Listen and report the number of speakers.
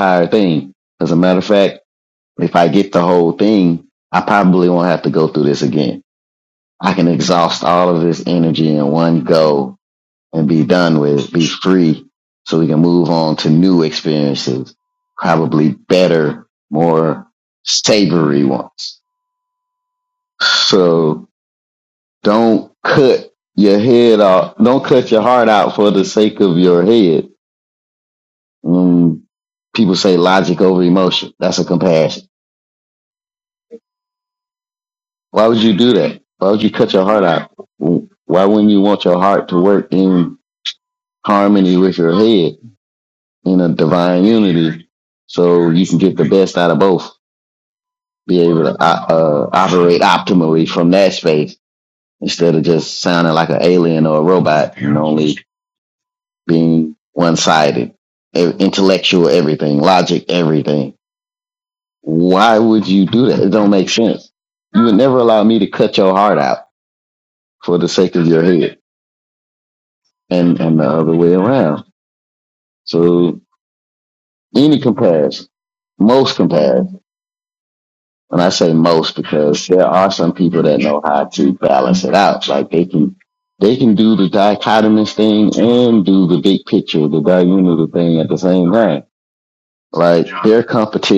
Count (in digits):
1